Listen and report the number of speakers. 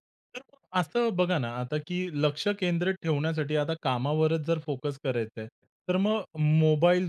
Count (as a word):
one